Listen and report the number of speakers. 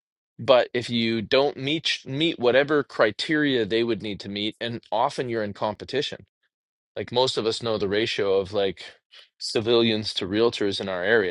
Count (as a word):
one